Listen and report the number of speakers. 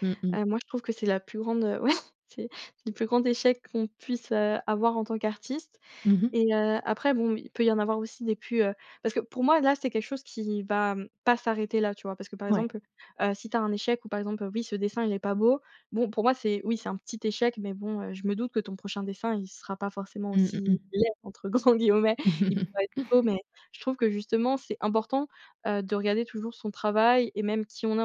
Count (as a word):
two